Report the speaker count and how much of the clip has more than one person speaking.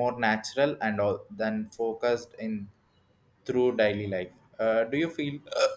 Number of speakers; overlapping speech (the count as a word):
one, no overlap